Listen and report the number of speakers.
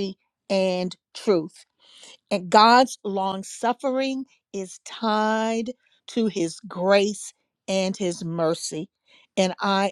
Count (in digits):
1